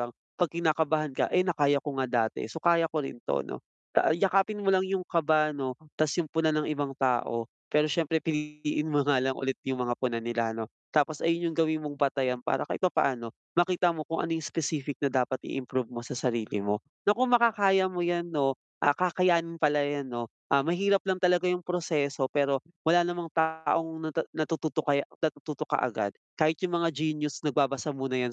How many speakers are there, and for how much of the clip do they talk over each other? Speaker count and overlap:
1, no overlap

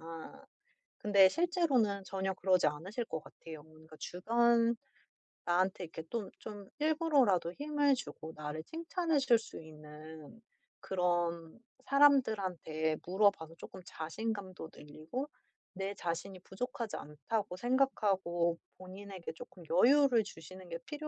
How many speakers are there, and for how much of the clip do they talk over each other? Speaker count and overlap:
1, no overlap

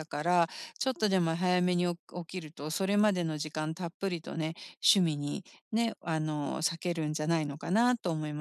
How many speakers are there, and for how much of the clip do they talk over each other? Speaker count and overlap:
1, no overlap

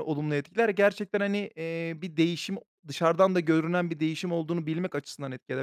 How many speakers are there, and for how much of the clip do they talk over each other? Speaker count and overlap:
1, no overlap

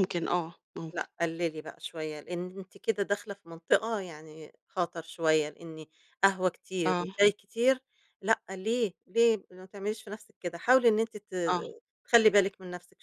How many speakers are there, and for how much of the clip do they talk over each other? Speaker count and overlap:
2, about 3%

